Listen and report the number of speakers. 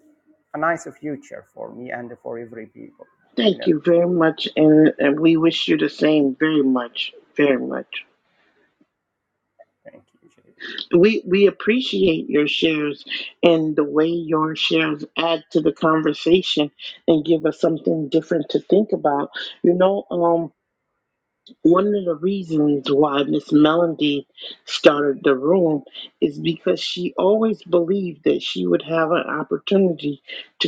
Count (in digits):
2